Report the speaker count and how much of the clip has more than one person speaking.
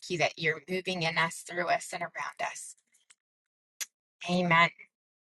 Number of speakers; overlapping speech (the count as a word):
one, no overlap